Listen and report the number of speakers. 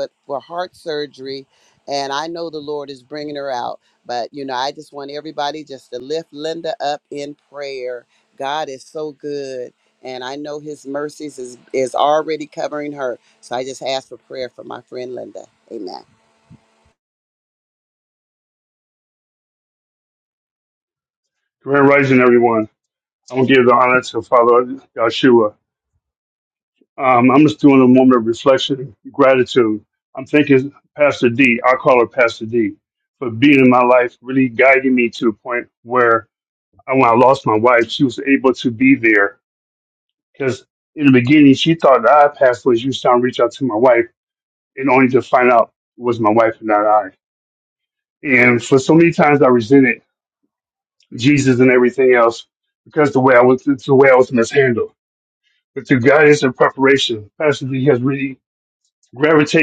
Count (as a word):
two